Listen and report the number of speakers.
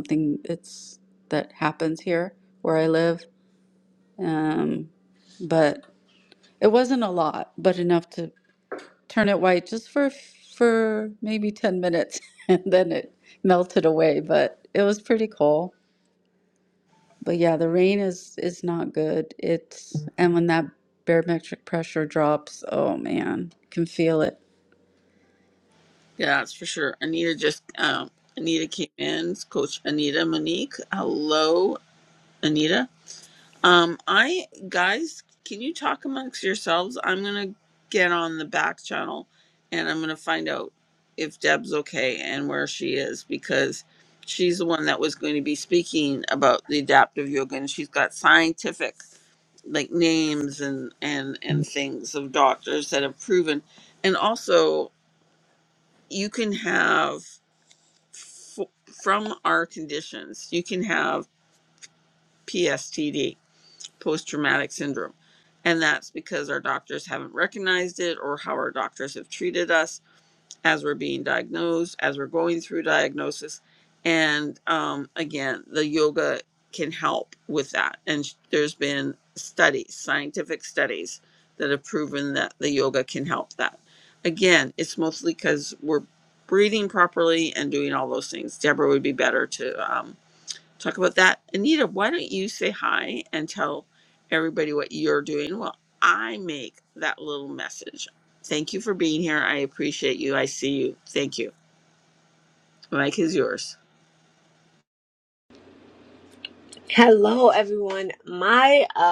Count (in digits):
3